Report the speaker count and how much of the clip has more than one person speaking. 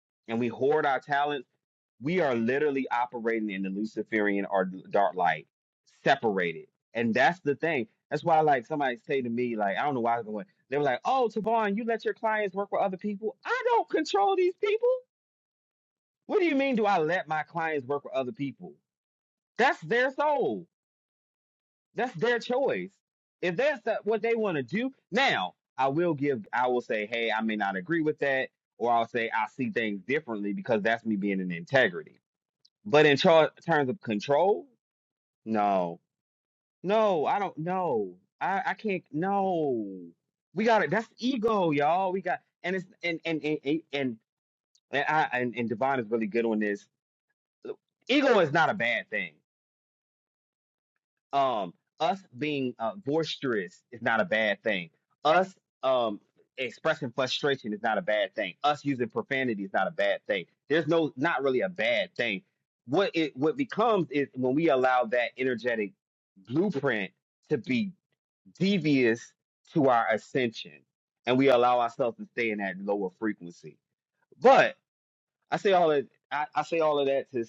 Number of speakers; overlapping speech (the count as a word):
one, no overlap